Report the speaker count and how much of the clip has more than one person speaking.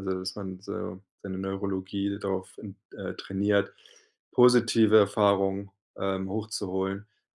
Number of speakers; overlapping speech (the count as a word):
one, no overlap